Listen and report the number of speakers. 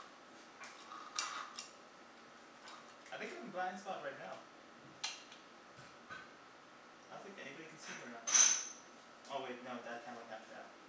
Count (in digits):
1